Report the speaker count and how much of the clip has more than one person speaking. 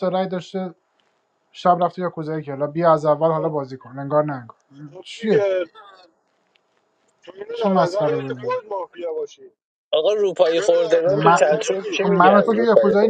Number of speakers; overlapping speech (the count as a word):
three, about 31%